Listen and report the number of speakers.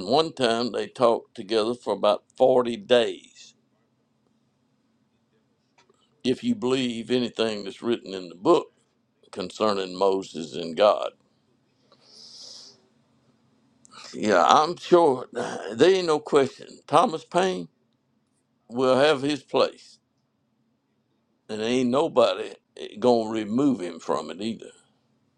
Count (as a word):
one